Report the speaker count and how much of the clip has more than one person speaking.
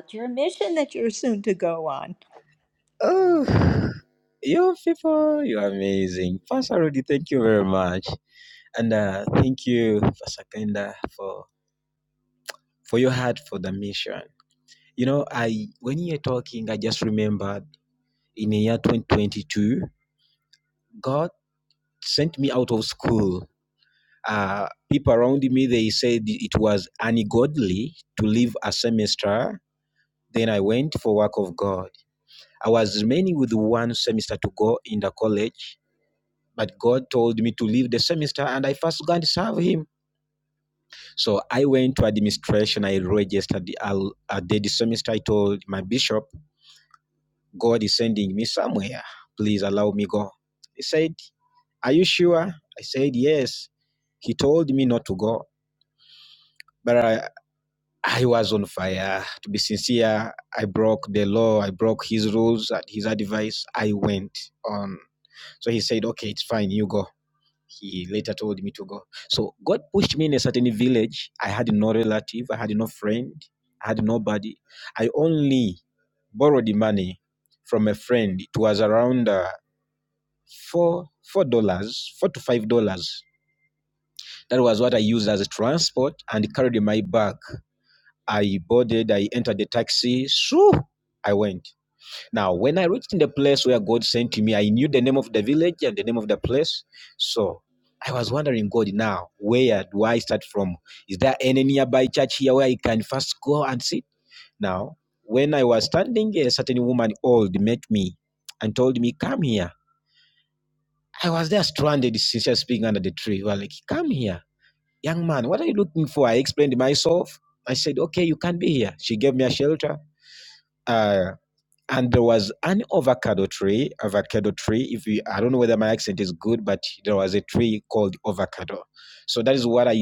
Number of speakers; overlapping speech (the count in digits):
2, no overlap